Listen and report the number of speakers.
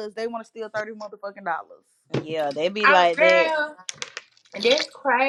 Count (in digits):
3